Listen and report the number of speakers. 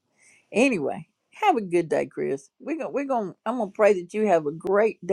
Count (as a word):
one